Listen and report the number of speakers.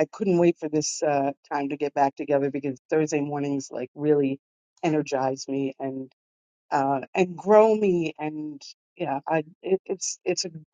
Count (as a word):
one